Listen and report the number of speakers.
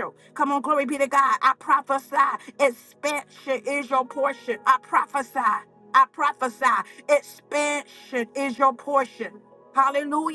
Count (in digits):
1